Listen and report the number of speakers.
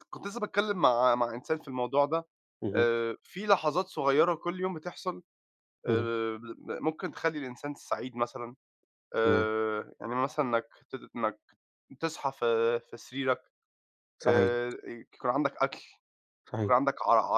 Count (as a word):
two